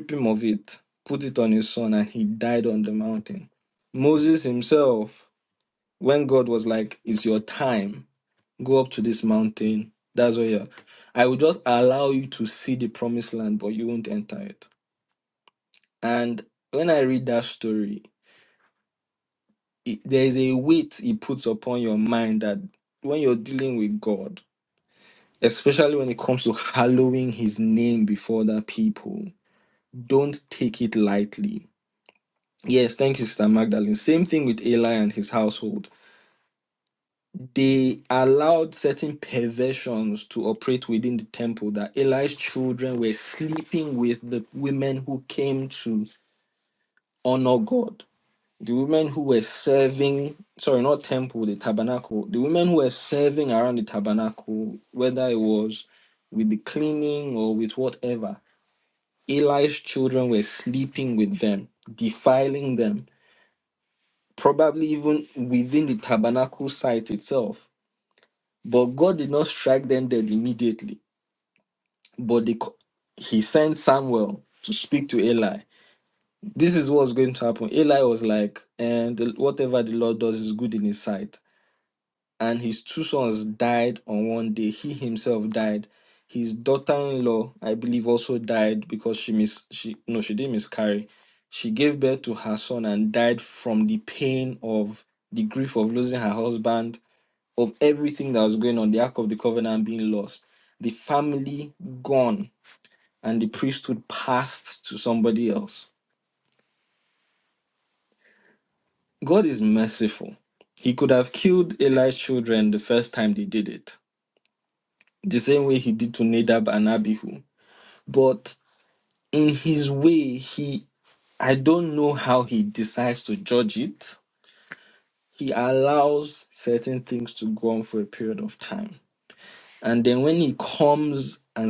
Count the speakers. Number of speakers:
1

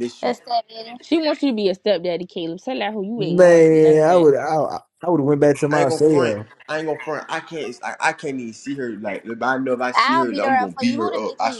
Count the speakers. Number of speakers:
4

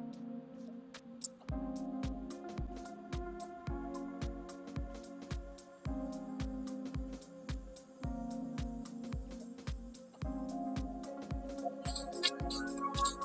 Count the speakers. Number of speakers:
0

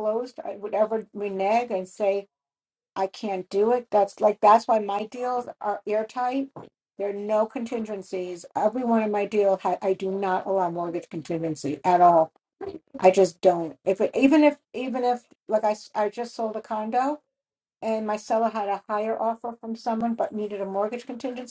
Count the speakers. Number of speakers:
1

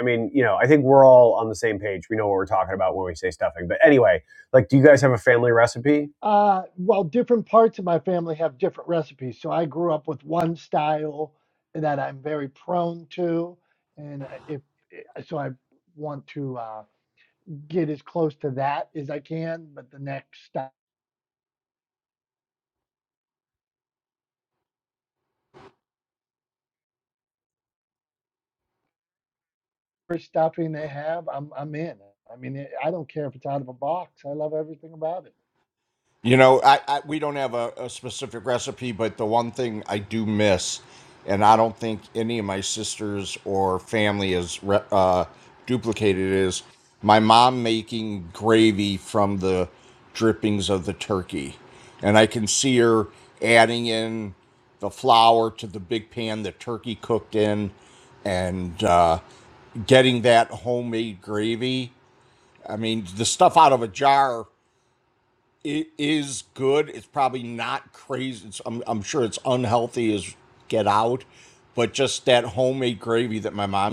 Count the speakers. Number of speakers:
3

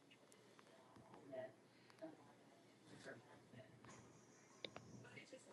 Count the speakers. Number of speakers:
0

